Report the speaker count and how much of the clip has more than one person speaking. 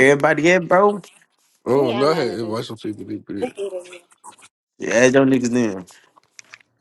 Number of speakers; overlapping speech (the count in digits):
3, about 15%